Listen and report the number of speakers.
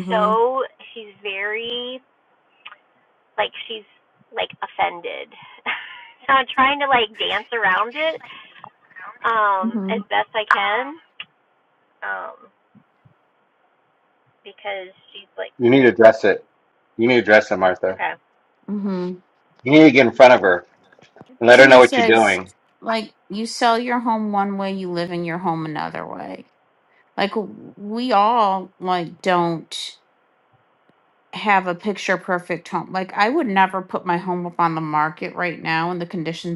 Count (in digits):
3